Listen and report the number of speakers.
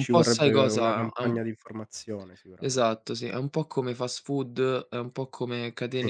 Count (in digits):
2